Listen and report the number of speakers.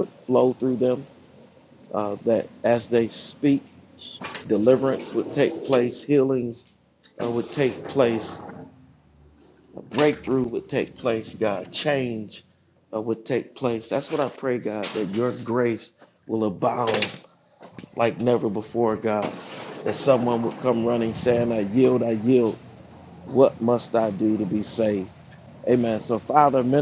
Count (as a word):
one